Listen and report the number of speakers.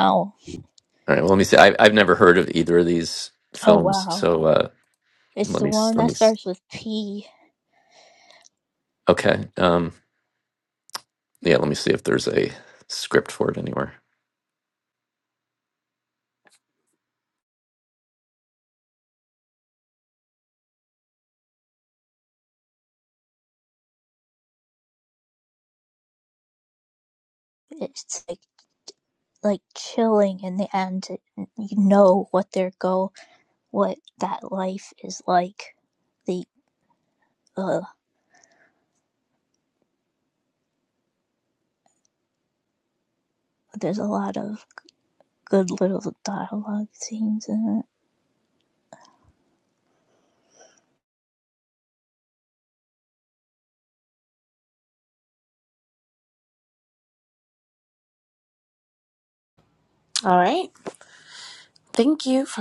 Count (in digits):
3